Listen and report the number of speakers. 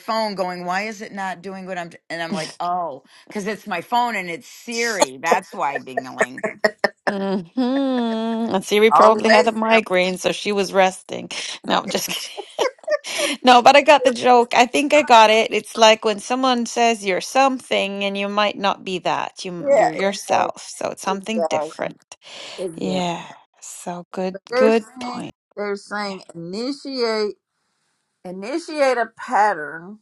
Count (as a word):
three